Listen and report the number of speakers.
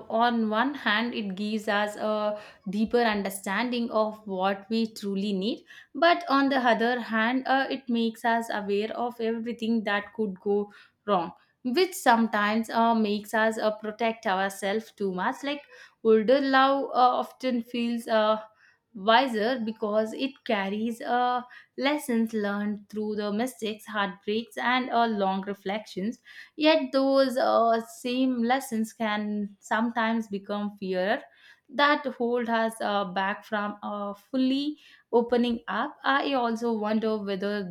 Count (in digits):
1